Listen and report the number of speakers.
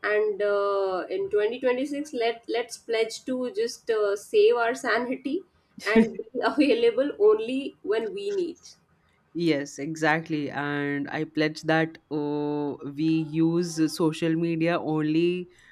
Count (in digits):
2